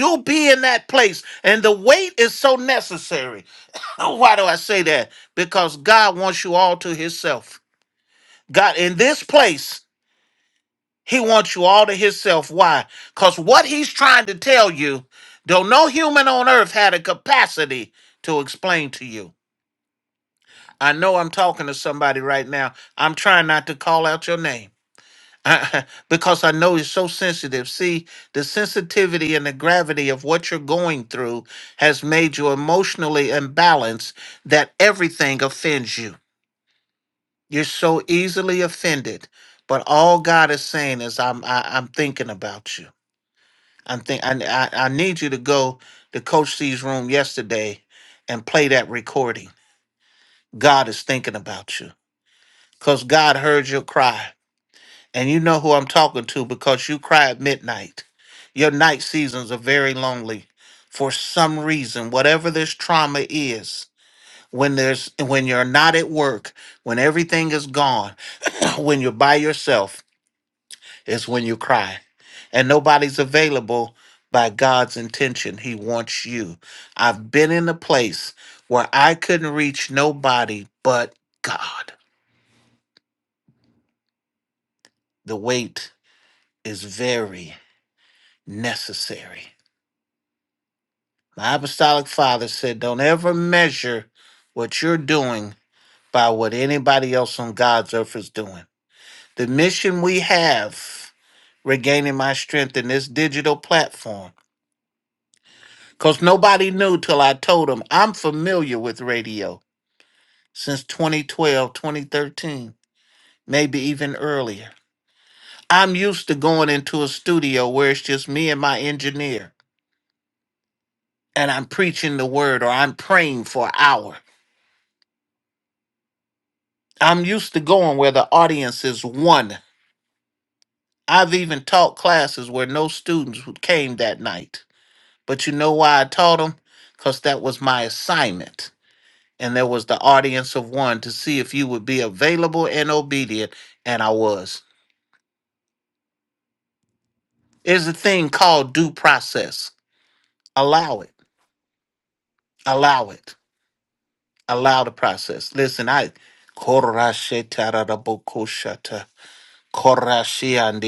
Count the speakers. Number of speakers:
one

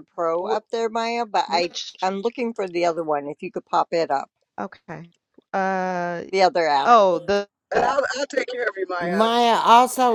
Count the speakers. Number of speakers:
four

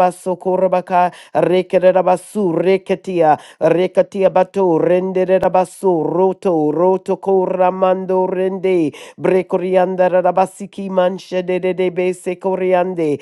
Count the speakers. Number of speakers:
one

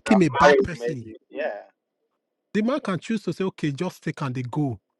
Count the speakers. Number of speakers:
two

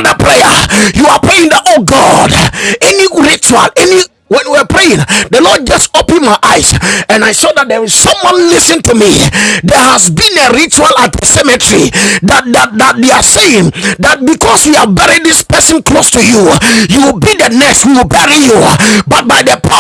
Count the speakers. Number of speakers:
one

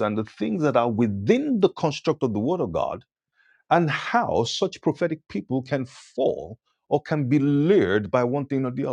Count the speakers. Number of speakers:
one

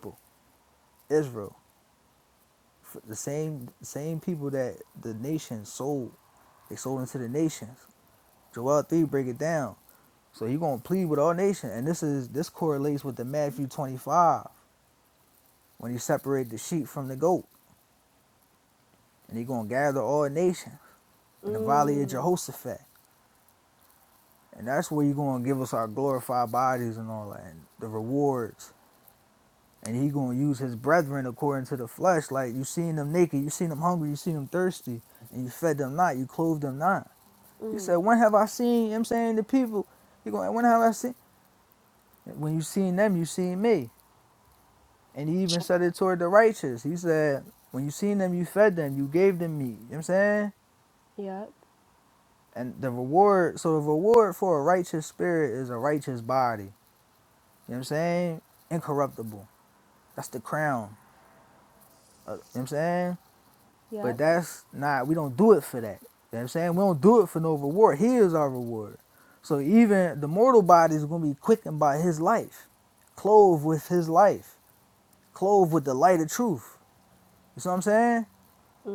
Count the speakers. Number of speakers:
two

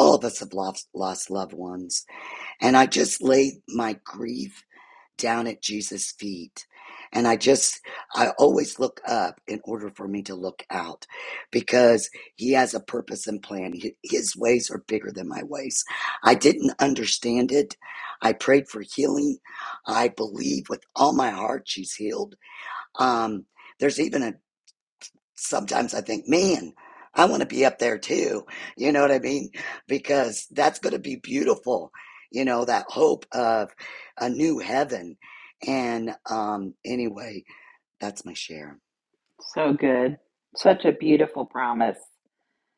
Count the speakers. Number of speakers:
two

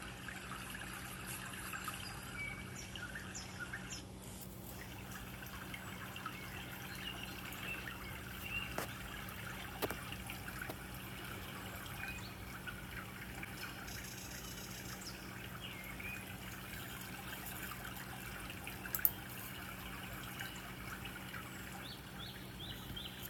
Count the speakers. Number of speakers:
zero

